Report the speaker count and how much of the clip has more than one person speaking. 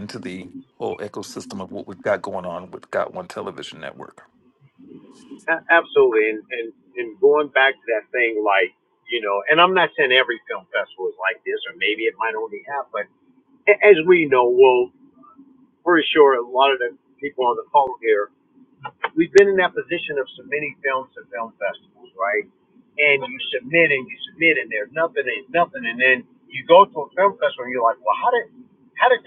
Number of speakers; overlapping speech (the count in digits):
2, no overlap